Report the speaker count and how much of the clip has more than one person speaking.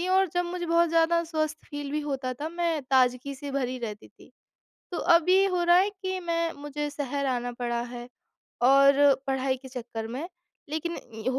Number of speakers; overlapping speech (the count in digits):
1, no overlap